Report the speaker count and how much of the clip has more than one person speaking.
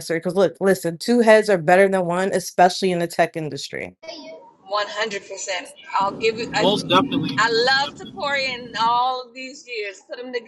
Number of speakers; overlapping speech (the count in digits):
3, about 12%